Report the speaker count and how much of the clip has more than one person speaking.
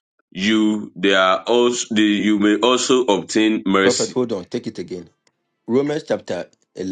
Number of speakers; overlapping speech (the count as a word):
two, about 4%